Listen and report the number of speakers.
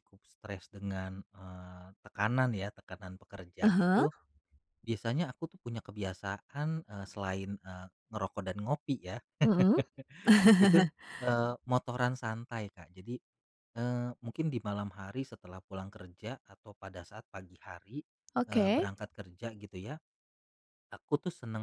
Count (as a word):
two